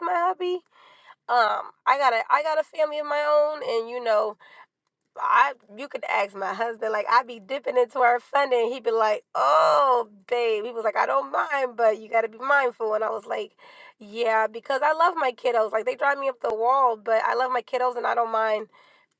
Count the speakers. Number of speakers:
1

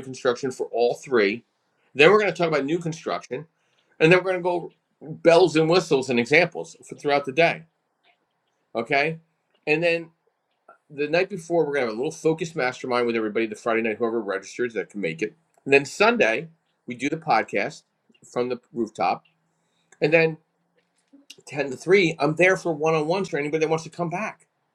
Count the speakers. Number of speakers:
1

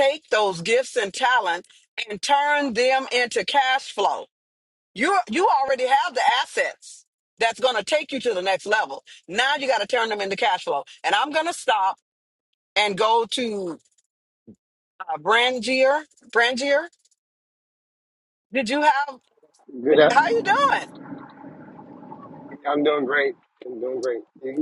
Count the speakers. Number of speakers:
2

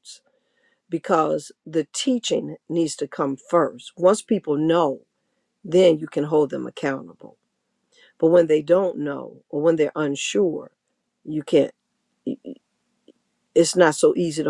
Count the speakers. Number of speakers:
1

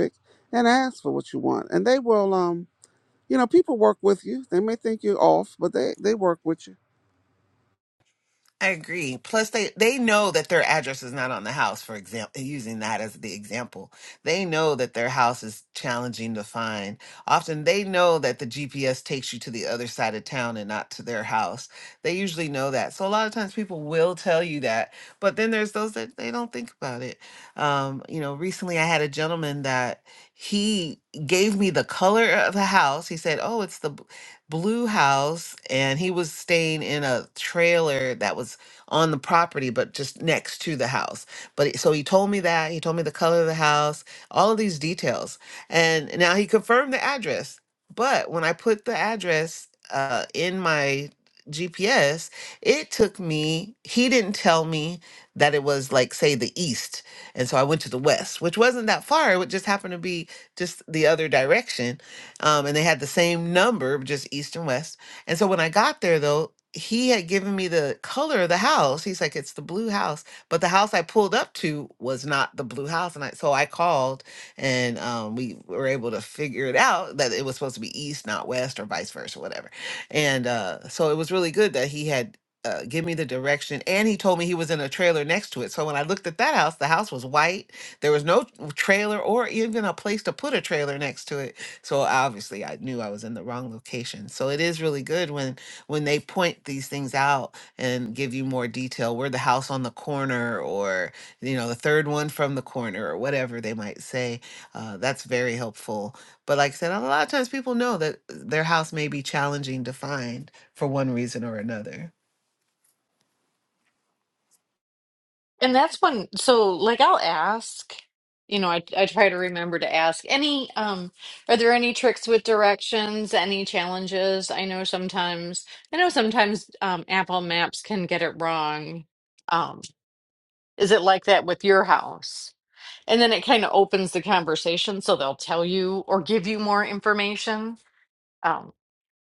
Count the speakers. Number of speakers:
3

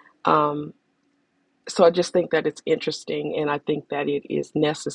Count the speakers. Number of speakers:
1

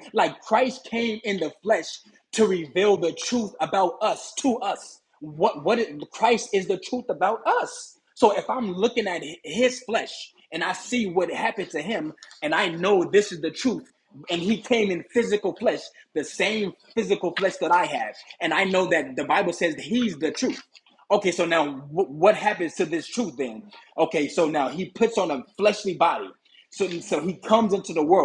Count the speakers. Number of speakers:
1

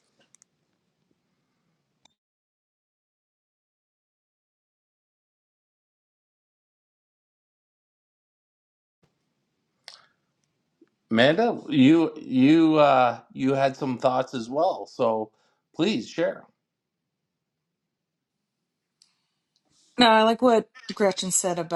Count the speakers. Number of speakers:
2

